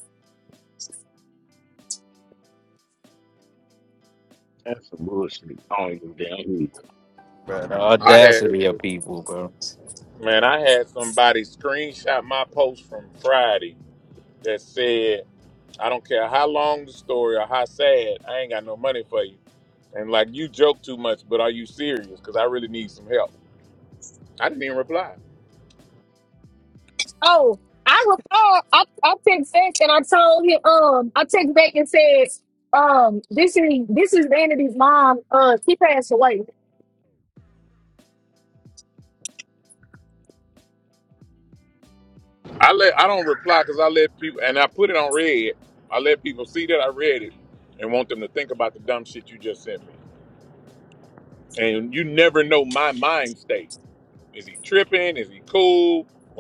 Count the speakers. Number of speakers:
4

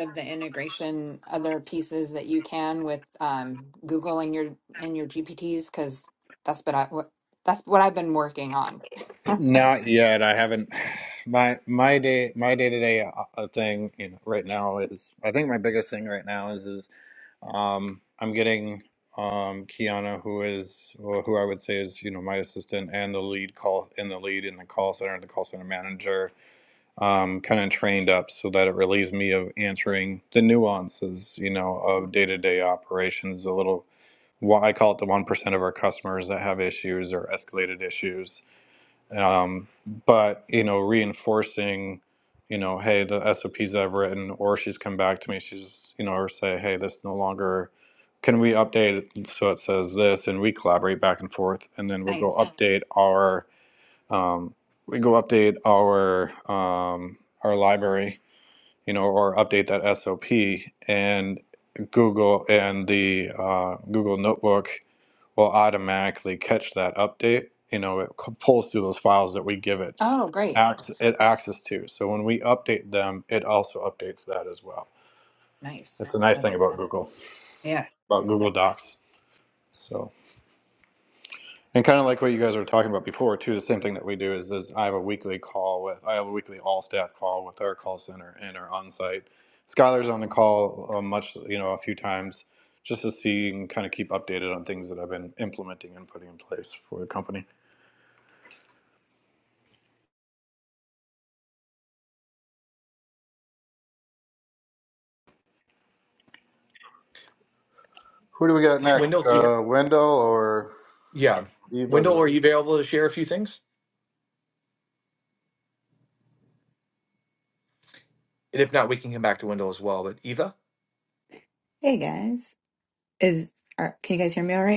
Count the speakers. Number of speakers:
4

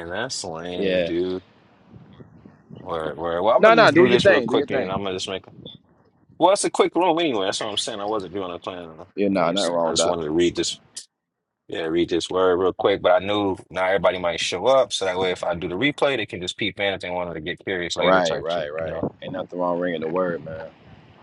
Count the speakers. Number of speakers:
2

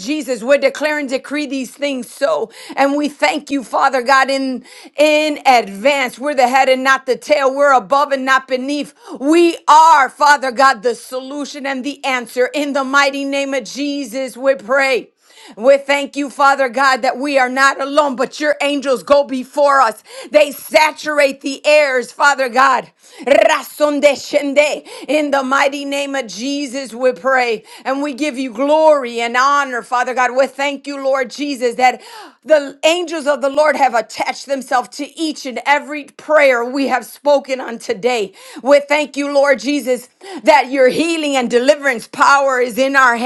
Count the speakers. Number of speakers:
1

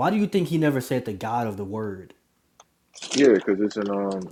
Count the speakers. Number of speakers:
2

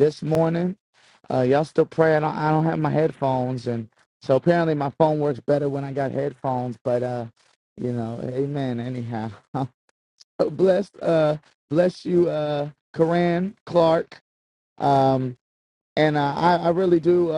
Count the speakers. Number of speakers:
1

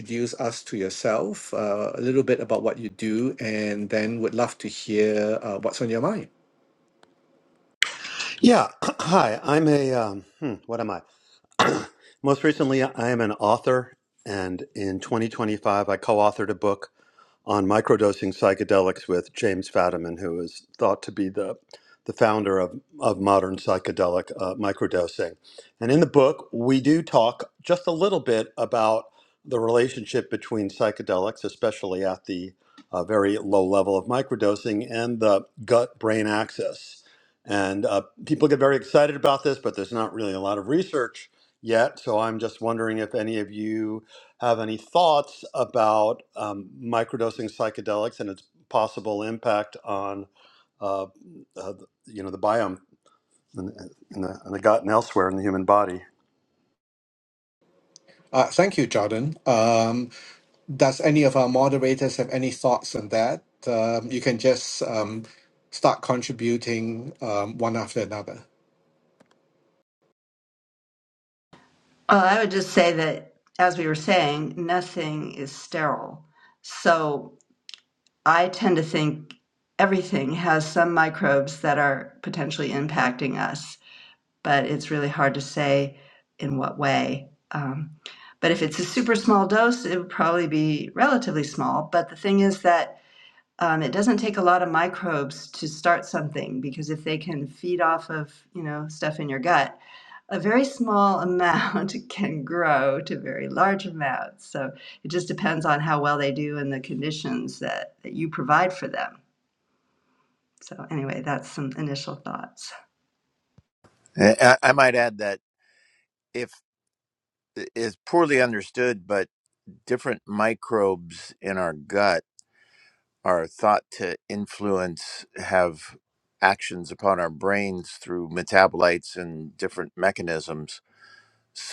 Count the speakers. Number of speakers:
4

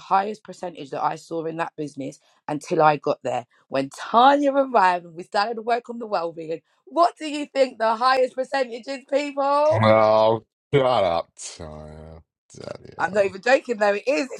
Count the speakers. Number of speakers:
2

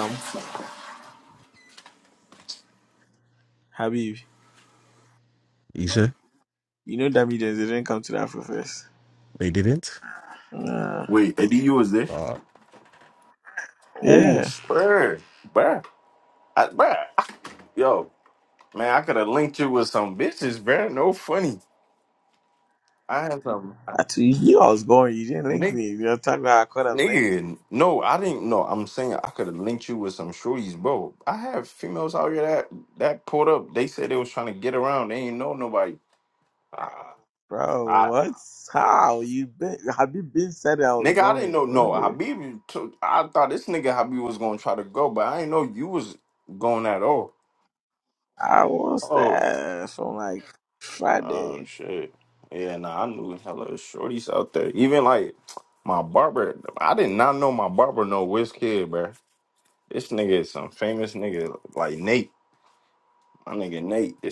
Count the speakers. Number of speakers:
3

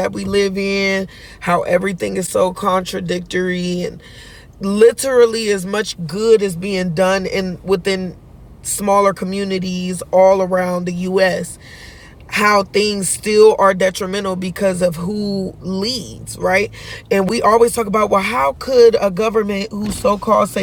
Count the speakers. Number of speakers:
1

